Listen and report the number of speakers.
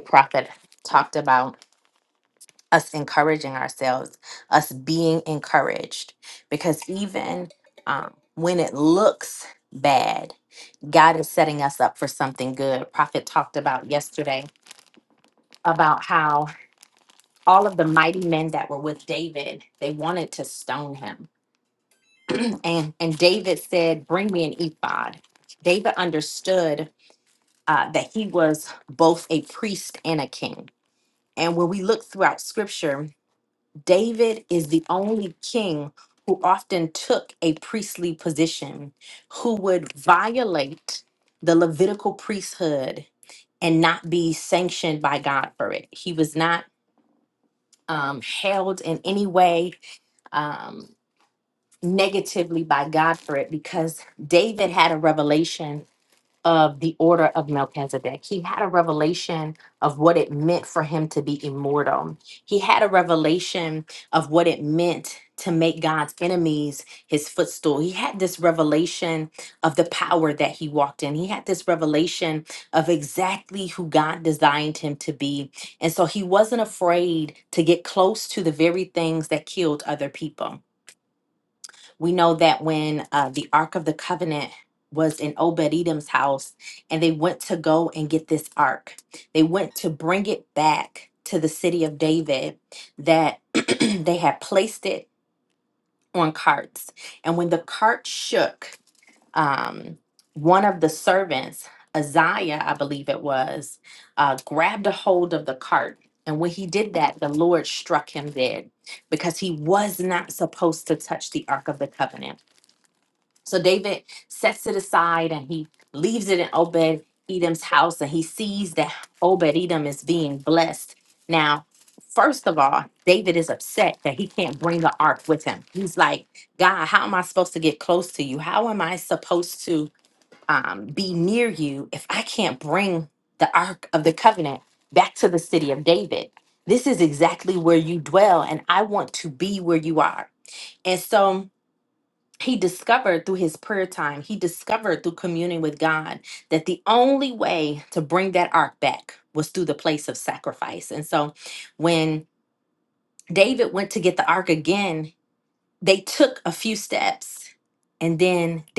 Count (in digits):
1